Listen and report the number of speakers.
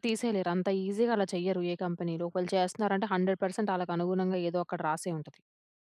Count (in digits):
1